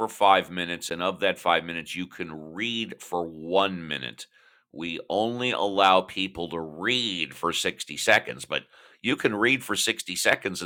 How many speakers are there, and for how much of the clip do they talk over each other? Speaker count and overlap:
1, no overlap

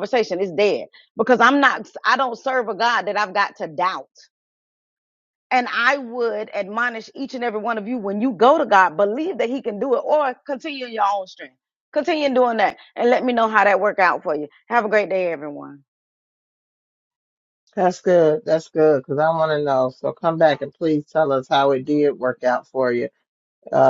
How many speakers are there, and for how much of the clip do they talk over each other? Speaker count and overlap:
2, no overlap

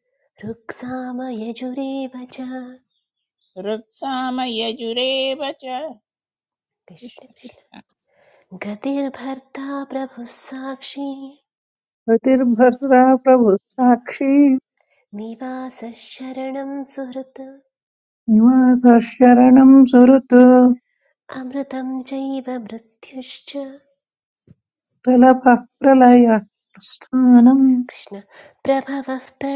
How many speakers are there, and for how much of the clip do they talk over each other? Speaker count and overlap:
3, about 2%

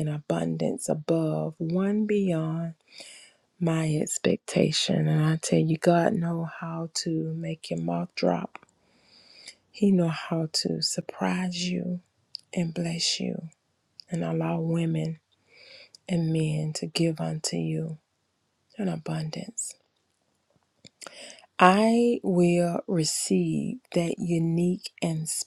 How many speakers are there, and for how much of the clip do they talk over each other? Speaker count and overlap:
1, no overlap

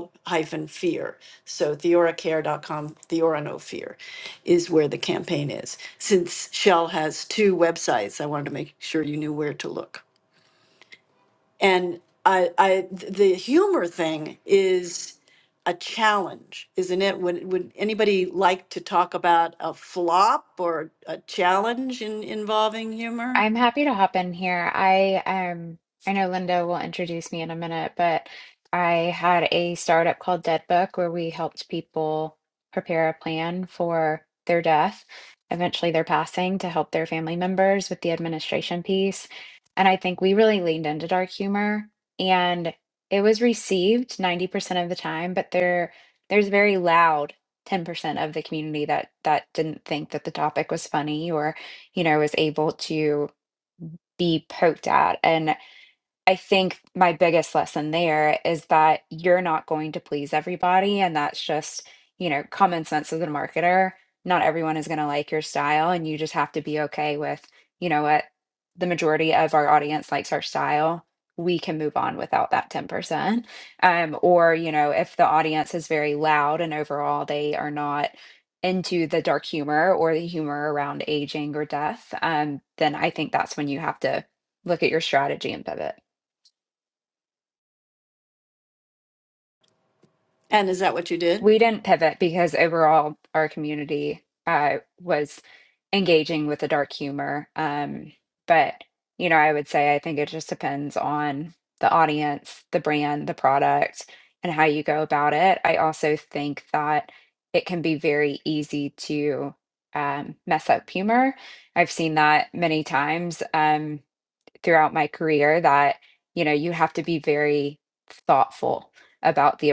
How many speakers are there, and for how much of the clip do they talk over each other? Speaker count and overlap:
2, under 1%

